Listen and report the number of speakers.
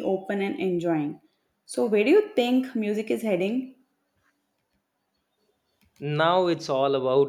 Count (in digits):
2